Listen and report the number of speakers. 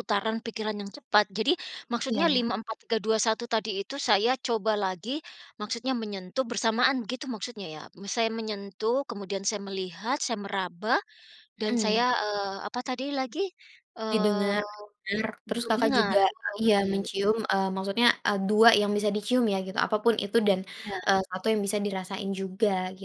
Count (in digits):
2